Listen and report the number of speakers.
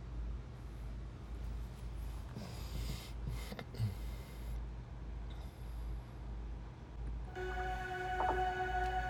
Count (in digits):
0